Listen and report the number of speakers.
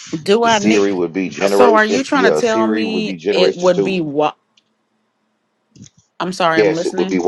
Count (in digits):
2